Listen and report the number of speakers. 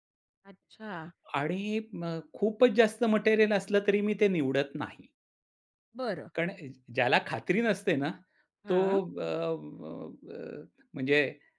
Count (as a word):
two